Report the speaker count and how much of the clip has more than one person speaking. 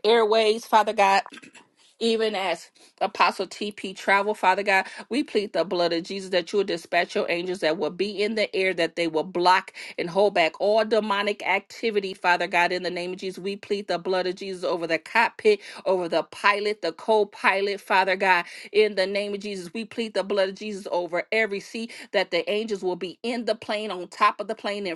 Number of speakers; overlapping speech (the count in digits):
1, no overlap